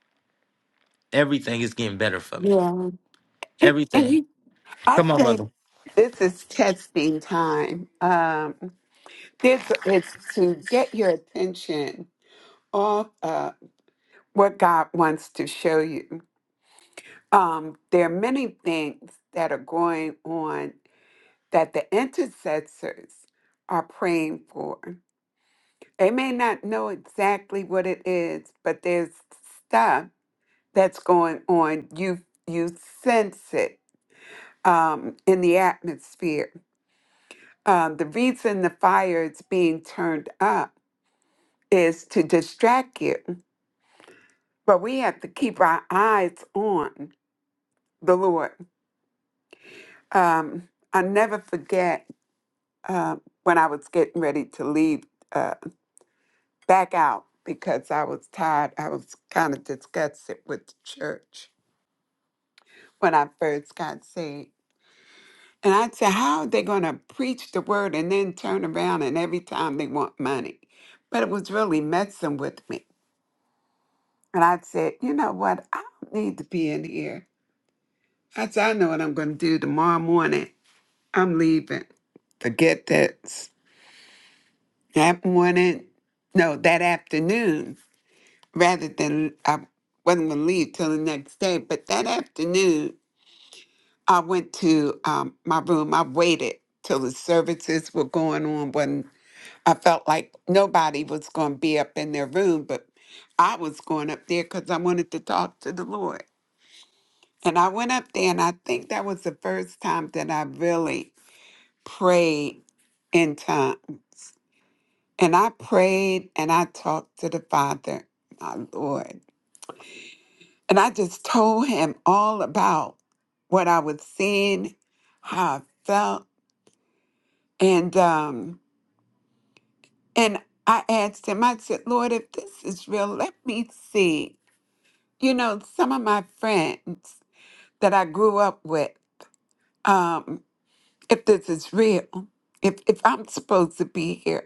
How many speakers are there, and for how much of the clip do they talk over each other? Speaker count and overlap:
2, about 1%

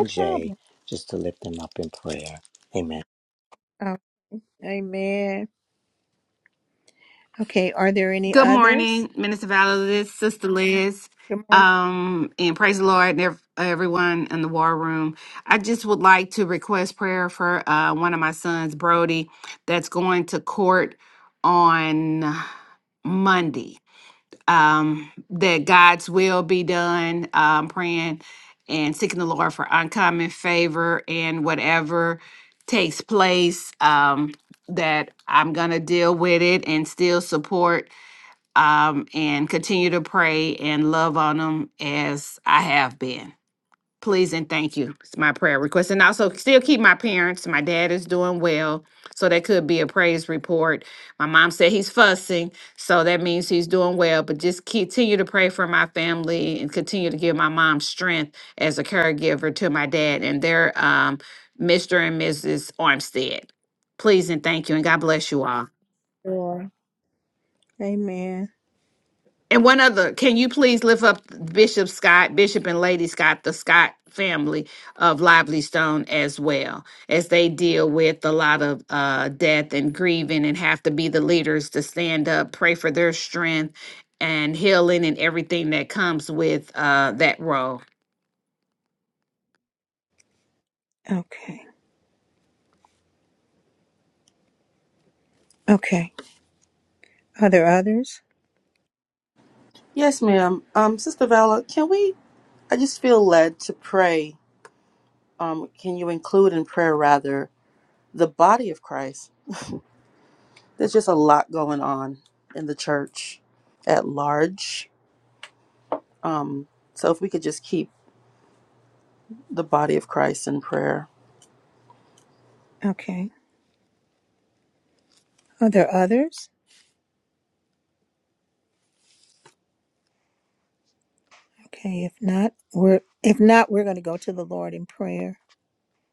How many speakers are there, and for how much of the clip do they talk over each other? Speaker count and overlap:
4, about 1%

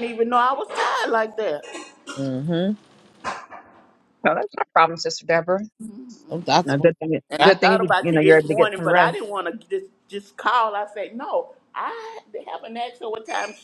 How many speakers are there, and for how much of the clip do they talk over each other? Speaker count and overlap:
3, about 15%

